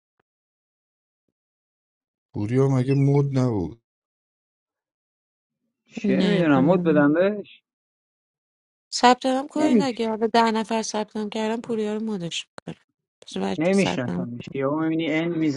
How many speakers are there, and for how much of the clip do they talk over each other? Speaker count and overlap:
3, about 8%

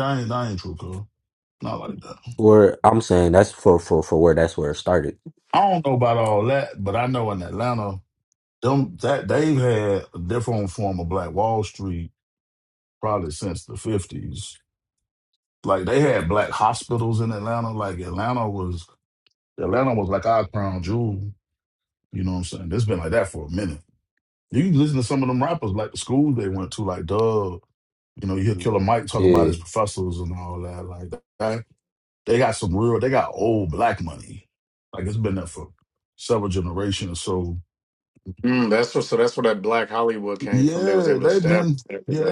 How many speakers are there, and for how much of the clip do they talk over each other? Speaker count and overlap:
3, about 5%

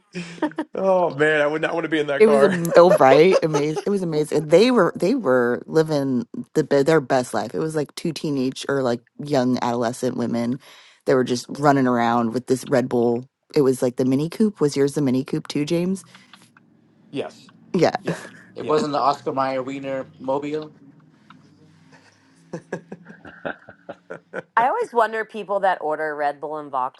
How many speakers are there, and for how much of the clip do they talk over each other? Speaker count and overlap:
4, about 2%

